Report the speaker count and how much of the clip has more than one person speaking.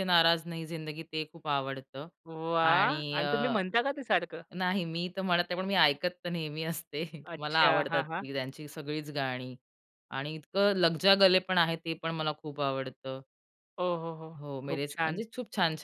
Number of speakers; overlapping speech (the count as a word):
two, about 16%